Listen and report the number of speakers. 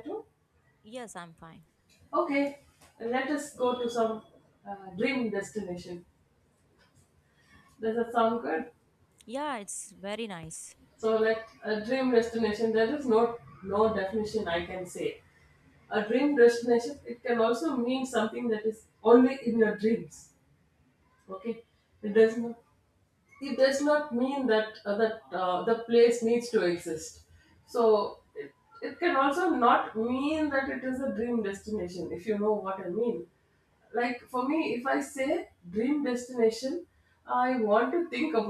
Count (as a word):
two